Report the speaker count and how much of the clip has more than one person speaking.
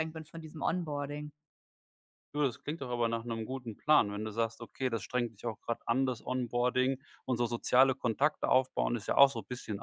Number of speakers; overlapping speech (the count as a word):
two, no overlap